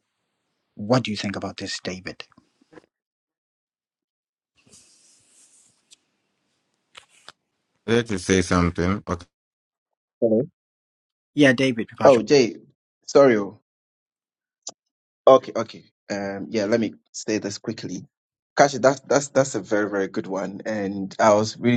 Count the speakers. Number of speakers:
three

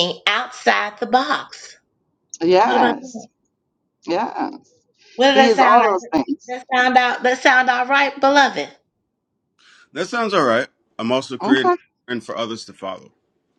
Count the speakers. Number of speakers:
three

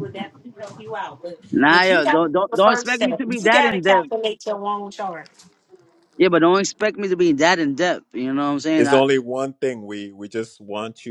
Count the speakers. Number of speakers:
three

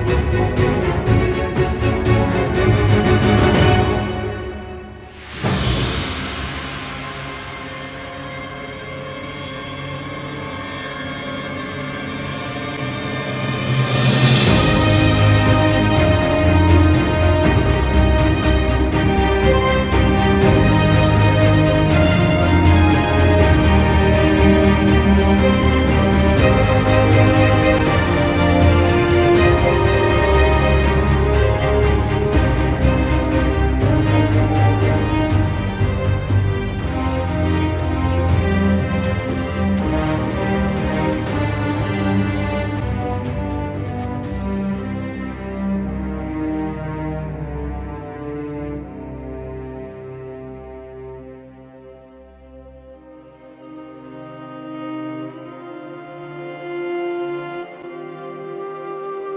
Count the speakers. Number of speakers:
zero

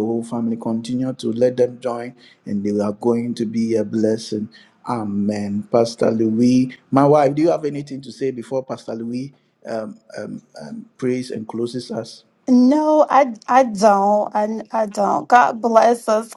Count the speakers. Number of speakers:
two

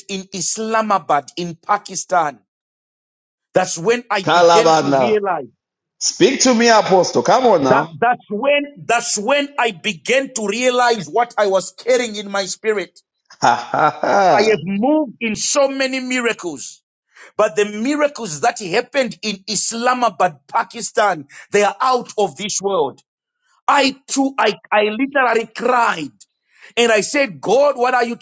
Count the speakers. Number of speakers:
two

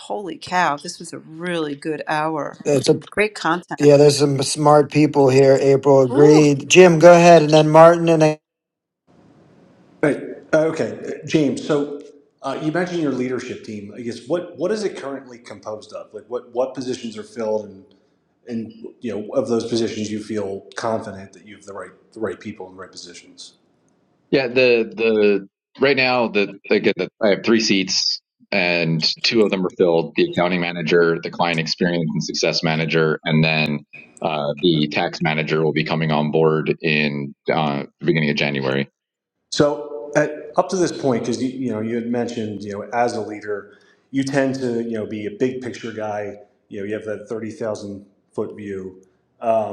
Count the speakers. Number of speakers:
four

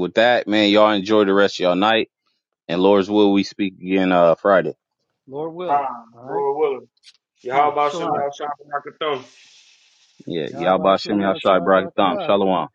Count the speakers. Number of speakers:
three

